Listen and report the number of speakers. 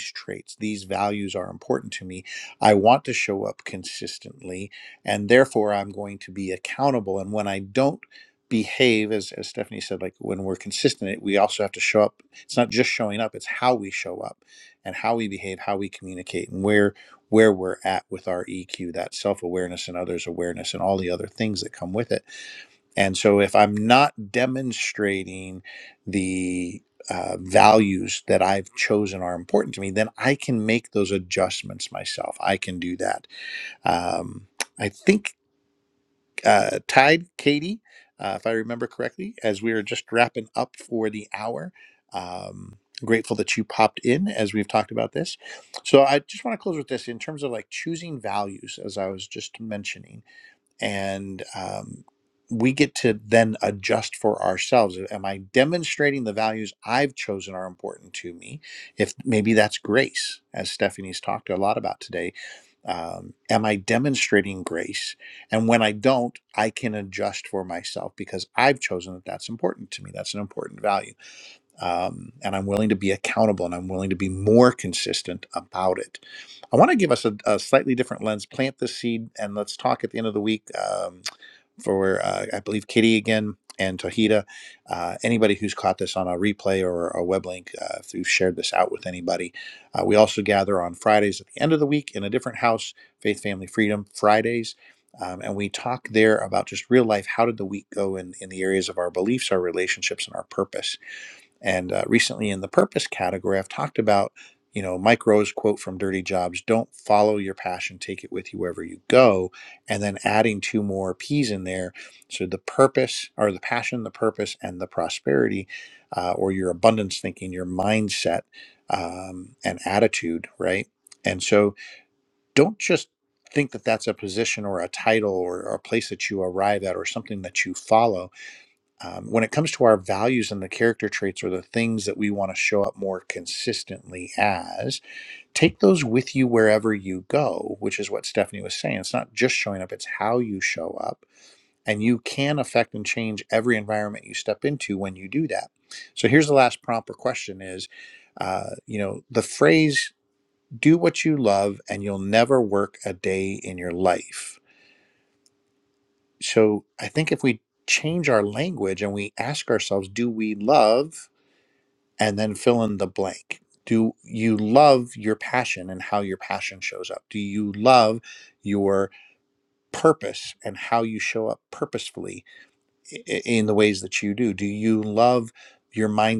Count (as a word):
one